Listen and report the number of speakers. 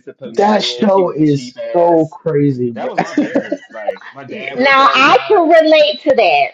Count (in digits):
3